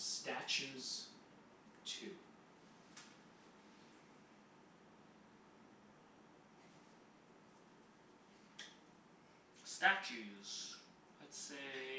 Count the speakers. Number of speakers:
two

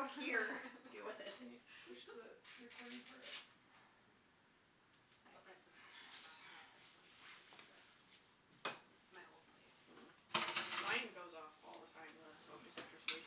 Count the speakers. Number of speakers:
three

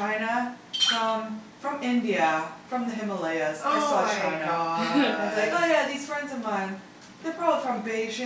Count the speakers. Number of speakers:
two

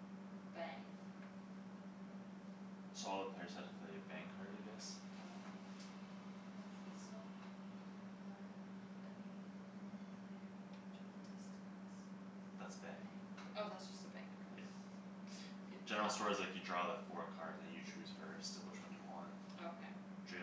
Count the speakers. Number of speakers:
two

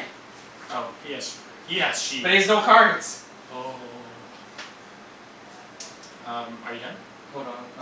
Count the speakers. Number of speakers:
two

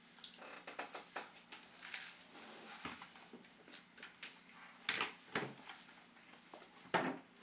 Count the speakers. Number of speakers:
zero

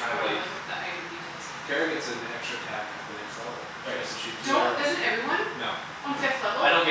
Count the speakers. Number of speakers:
three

